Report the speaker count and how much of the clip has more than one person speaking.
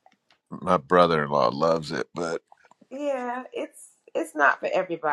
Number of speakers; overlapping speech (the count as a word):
two, no overlap